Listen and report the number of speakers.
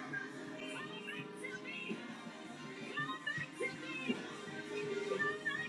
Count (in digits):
0